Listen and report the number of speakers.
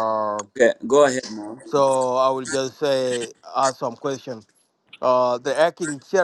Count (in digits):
2